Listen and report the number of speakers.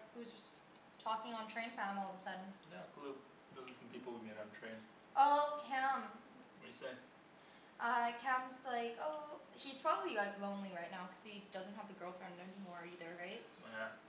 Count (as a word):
two